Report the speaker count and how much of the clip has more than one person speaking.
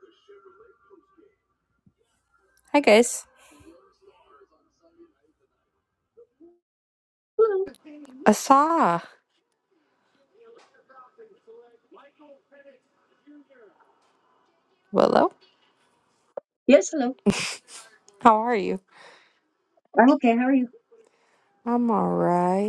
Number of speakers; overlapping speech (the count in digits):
2, no overlap